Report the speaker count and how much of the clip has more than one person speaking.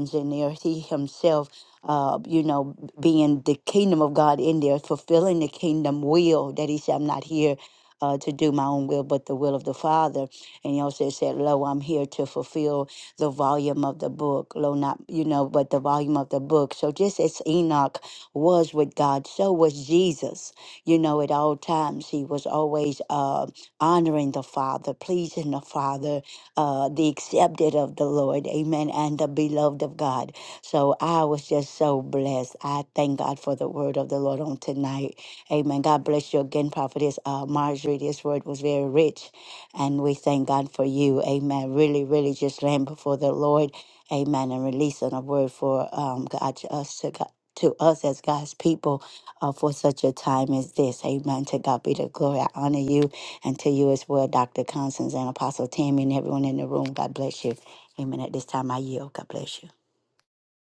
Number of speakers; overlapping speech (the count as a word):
one, no overlap